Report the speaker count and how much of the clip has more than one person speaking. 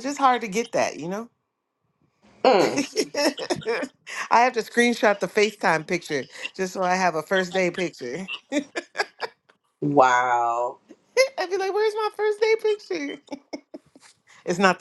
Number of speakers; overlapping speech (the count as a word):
two, about 2%